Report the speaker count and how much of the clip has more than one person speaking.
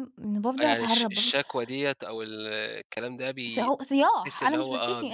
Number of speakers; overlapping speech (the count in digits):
2, about 37%